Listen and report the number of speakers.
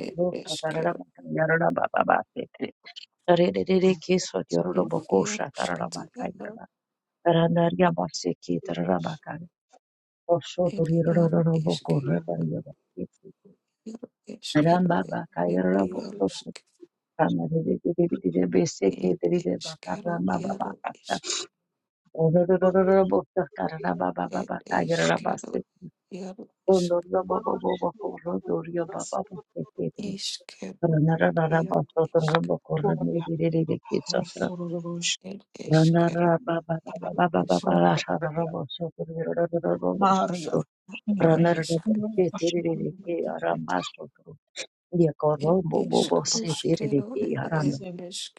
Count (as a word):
three